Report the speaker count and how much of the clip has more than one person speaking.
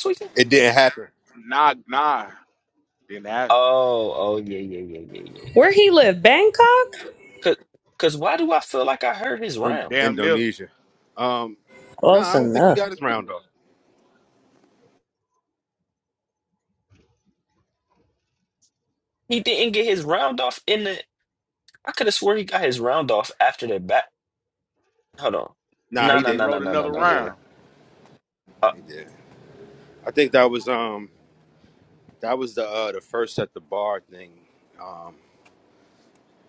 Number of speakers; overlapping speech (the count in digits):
4, about 8%